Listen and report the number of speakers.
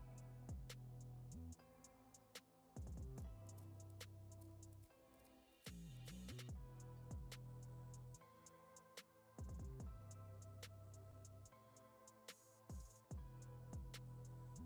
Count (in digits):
0